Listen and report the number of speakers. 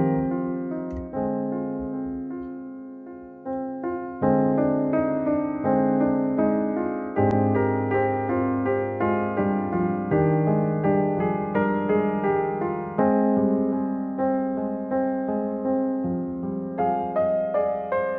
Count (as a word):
zero